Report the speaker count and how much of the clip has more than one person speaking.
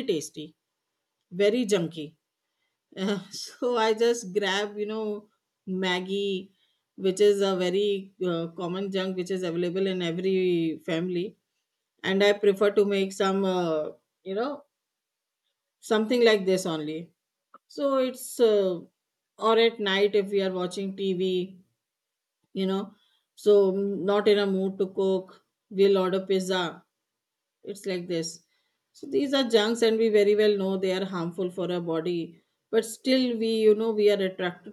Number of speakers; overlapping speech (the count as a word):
one, no overlap